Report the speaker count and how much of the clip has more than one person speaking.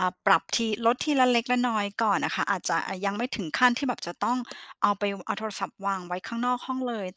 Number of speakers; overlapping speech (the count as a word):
one, no overlap